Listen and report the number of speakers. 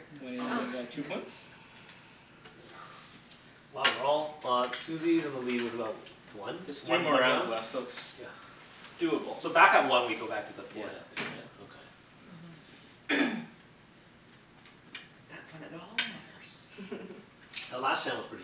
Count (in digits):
2